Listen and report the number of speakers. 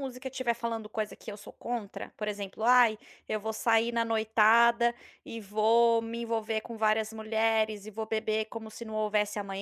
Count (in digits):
1